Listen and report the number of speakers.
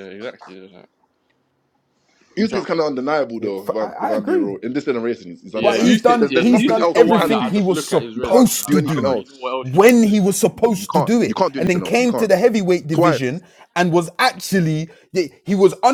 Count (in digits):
3